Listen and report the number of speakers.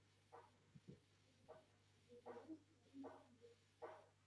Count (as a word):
zero